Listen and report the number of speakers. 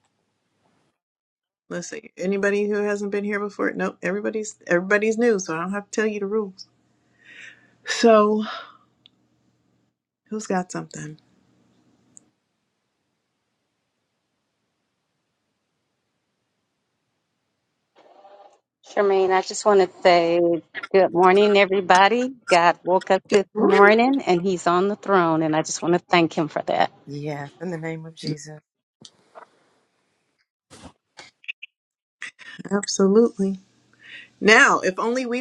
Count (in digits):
3